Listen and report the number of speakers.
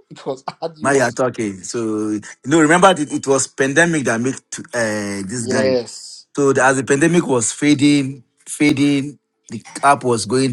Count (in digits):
2